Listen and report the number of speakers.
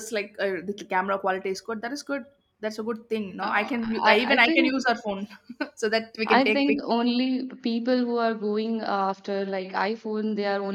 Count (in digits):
2